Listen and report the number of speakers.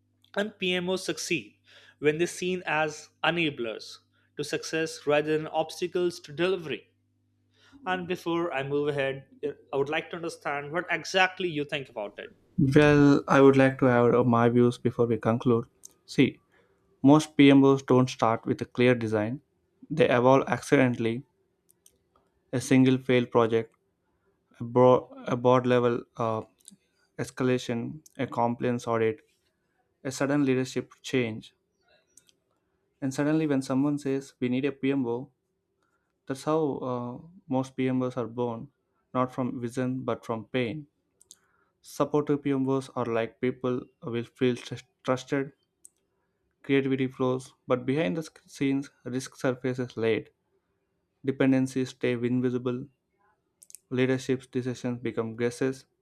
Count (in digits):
2